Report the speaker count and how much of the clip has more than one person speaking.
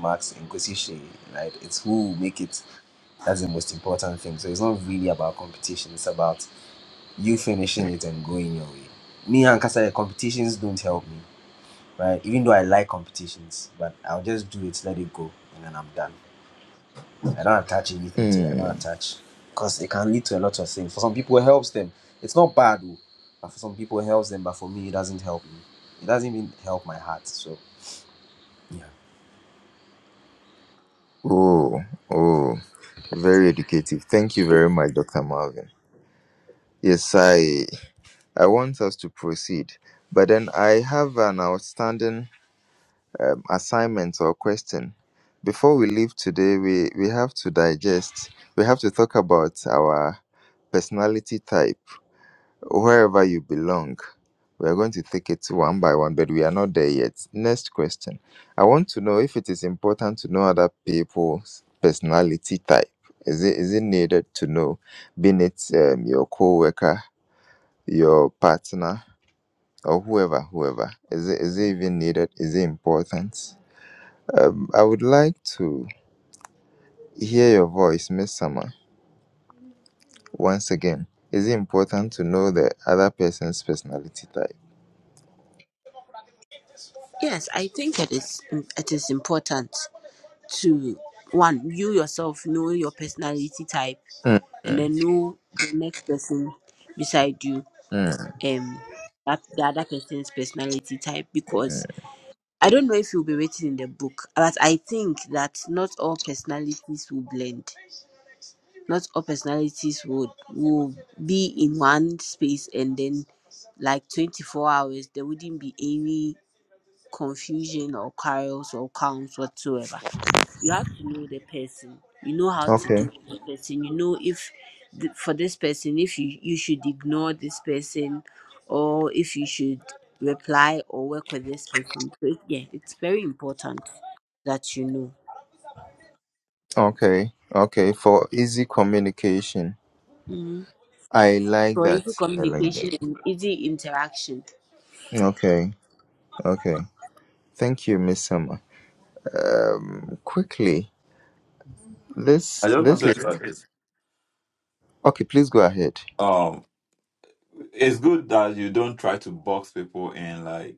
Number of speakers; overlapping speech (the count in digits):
4, about 2%